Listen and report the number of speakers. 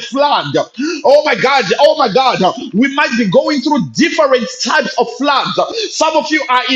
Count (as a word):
one